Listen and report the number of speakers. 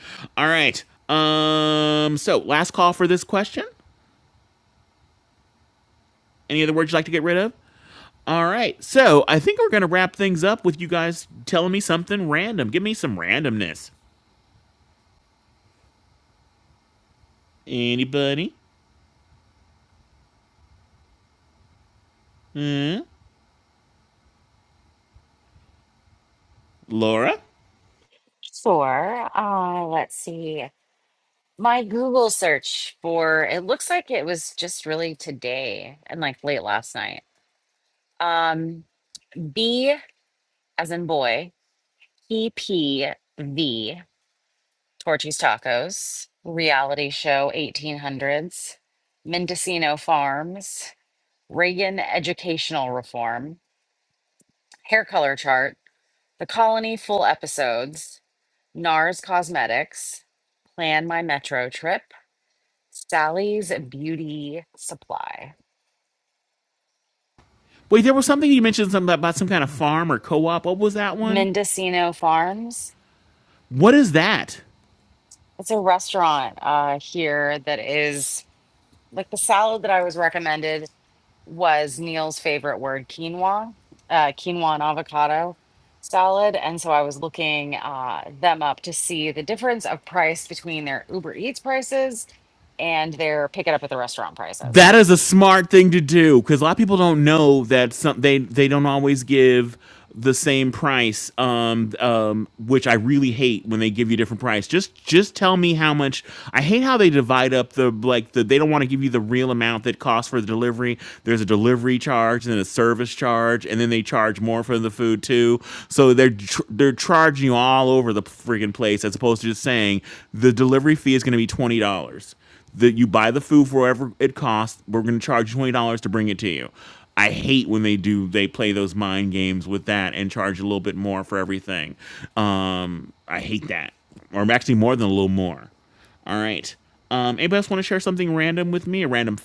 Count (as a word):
two